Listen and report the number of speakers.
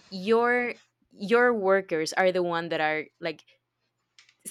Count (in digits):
1